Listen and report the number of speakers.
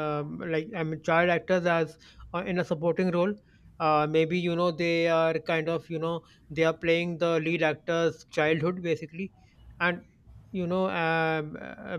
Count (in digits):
1